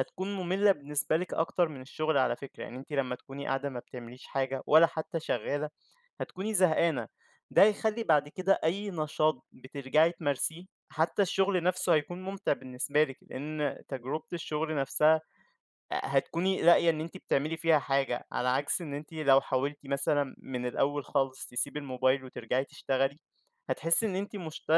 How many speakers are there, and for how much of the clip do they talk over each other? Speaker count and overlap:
1, no overlap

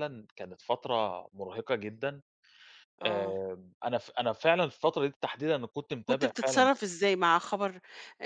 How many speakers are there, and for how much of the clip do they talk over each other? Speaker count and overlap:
2, about 11%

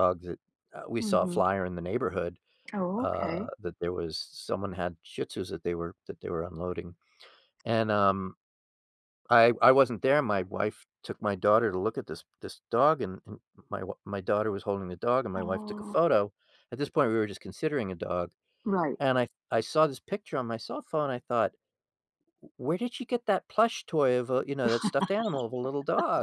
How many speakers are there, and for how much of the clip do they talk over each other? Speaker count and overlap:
2, about 6%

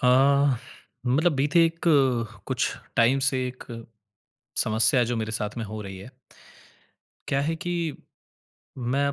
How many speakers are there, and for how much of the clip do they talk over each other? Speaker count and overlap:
1, no overlap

